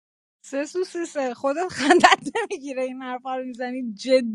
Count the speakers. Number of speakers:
one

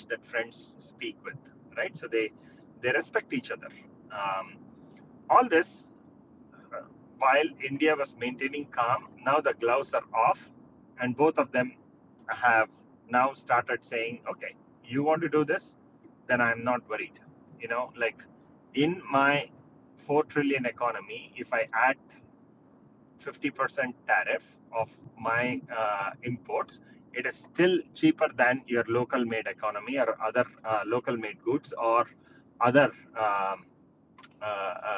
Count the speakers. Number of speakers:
one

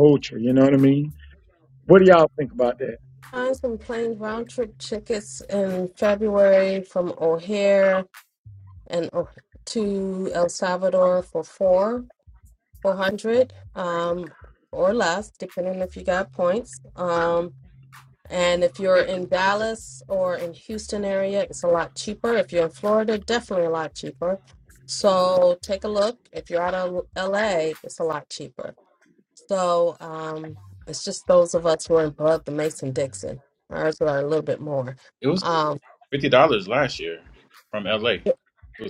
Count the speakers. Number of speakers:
three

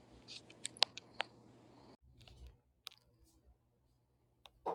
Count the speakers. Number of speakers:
zero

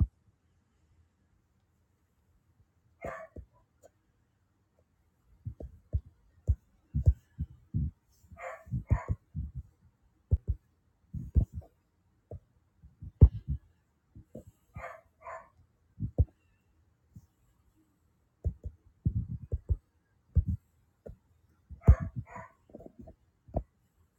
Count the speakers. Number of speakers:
zero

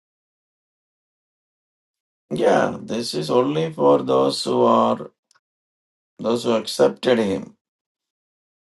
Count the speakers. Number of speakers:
one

